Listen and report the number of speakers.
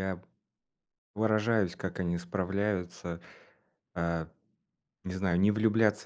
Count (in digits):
1